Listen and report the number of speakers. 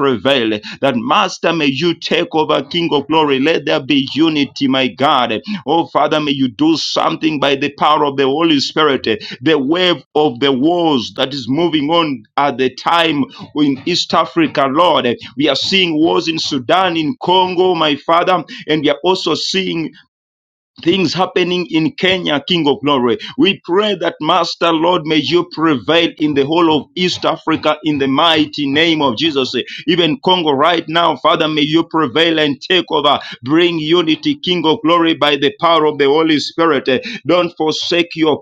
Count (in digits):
1